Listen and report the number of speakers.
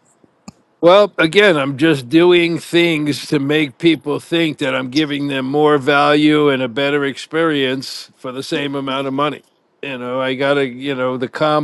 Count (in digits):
1